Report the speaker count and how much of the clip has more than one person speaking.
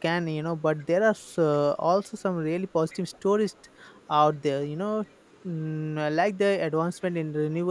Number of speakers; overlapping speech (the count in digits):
1, no overlap